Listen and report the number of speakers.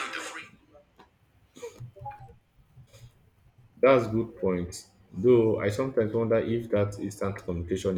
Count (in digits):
1